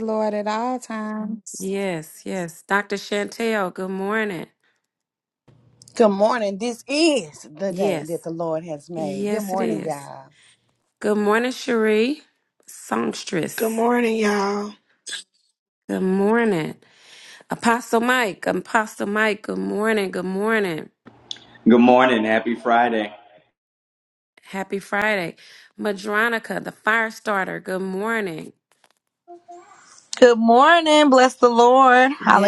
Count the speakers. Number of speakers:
6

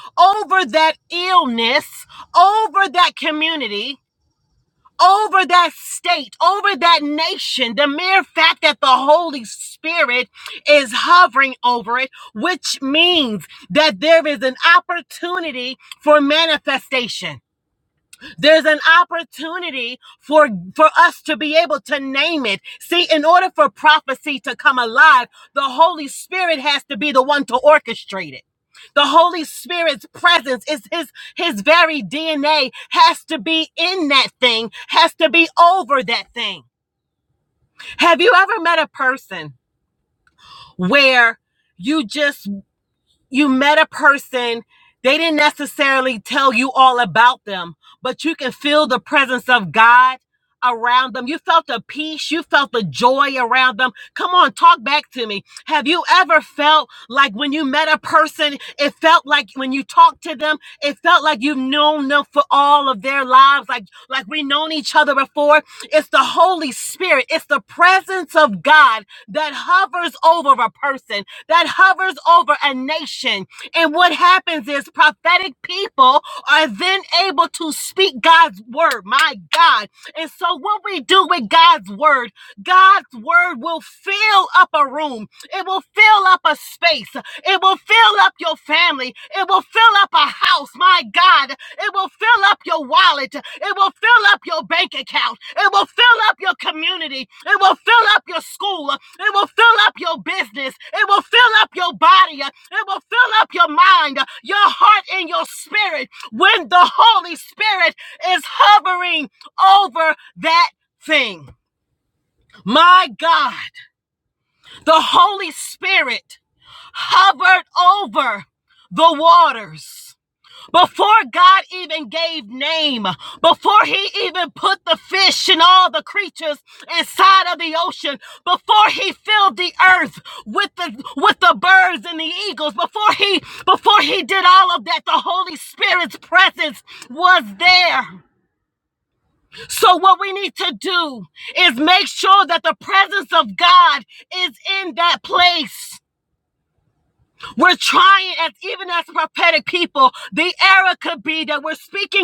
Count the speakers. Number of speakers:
1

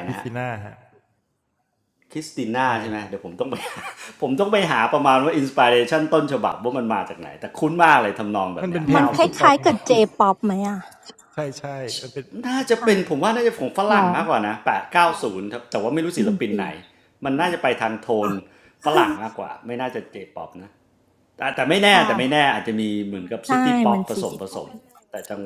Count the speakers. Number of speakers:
3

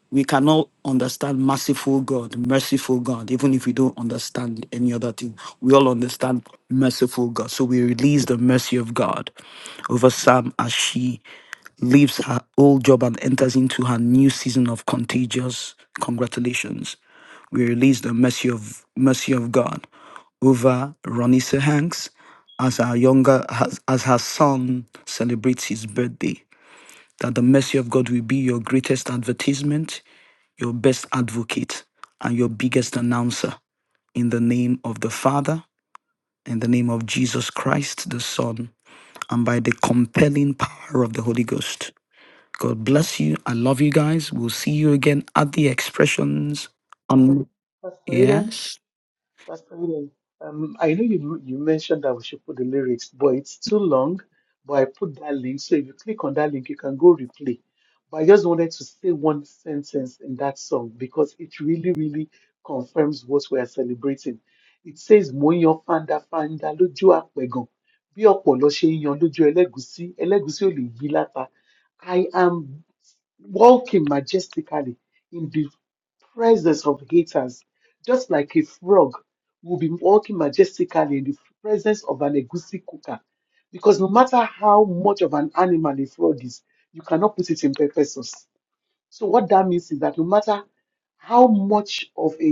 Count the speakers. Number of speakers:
2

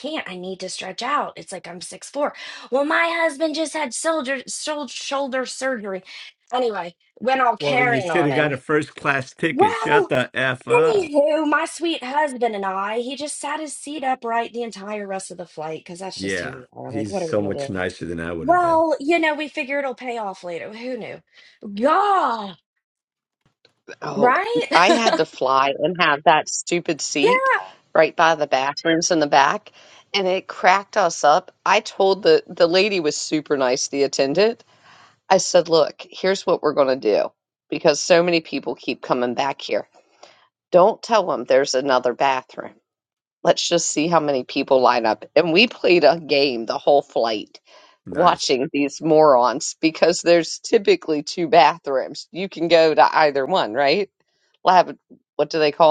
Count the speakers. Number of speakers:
3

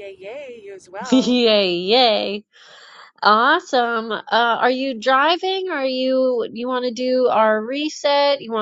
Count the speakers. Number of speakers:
2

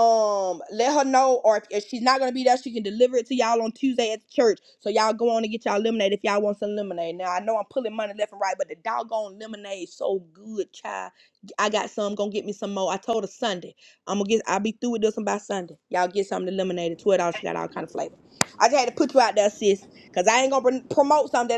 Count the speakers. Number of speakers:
1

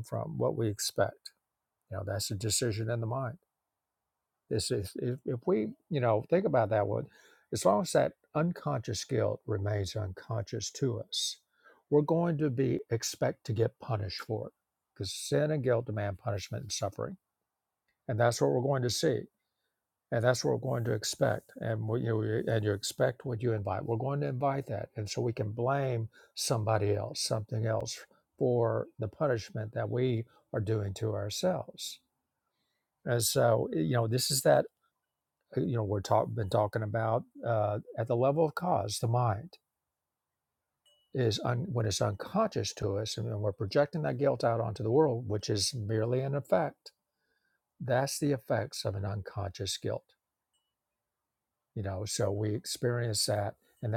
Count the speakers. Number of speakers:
1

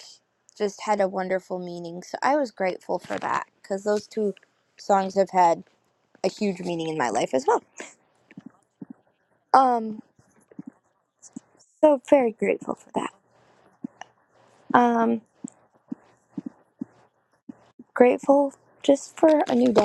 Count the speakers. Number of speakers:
1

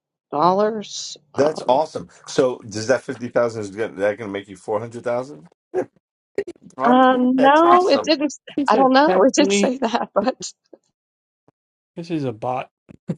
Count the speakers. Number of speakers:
3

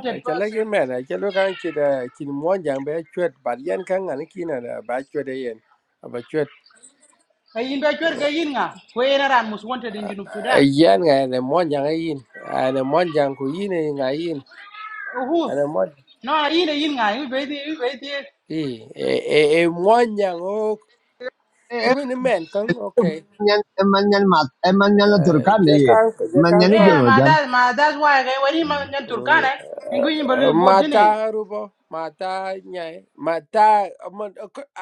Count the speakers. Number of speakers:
3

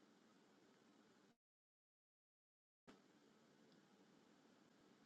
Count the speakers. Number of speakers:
0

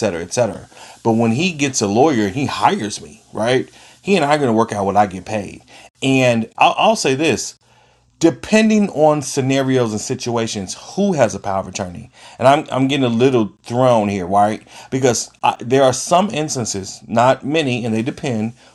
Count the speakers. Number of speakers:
1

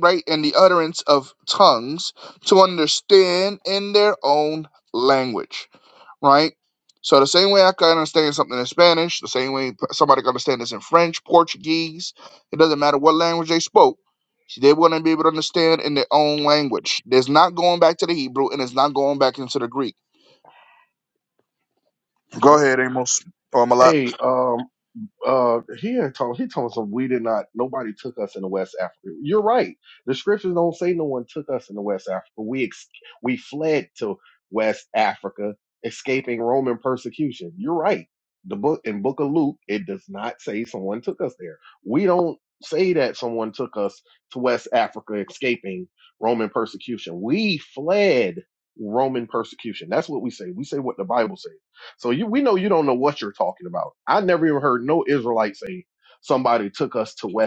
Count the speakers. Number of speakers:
2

